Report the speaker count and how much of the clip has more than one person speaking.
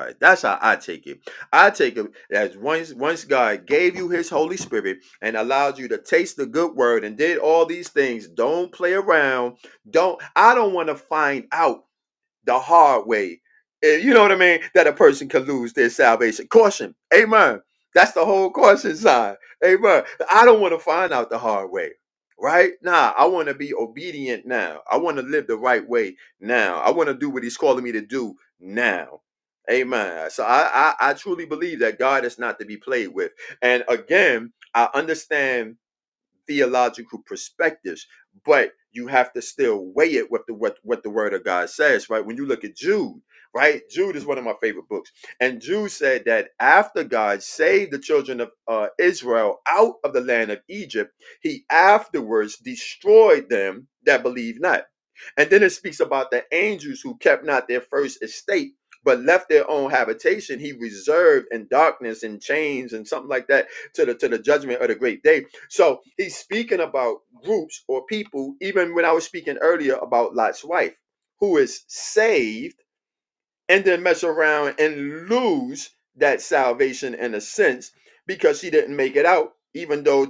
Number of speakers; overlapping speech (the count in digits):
1, no overlap